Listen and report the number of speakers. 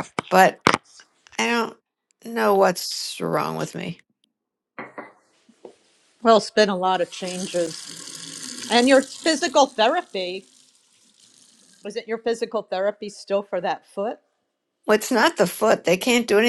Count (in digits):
2